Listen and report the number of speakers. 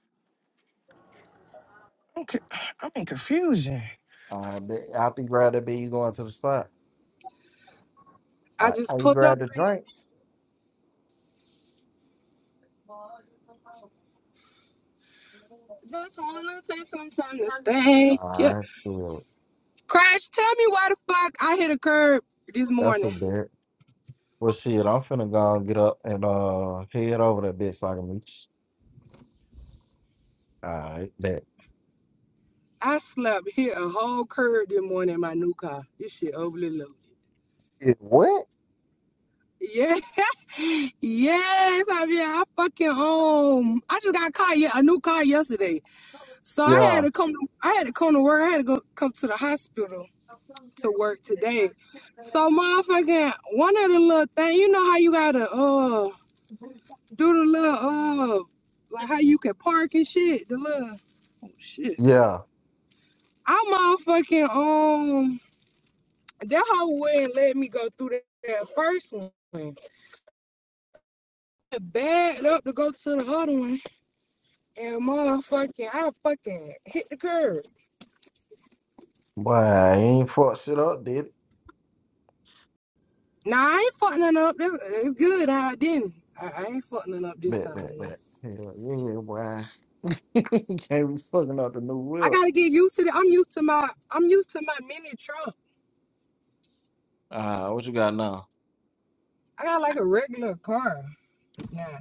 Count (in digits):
2